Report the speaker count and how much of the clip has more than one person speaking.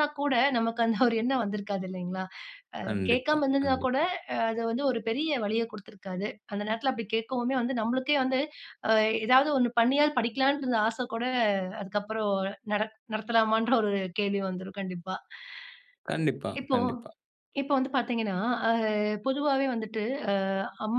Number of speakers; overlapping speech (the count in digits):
2, about 7%